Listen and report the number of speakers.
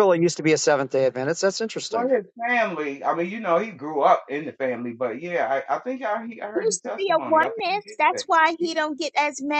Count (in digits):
3